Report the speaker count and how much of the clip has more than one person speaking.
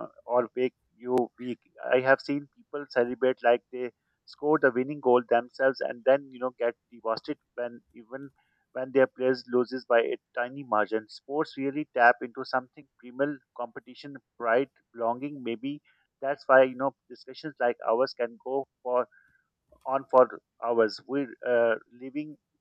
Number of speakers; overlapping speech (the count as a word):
one, no overlap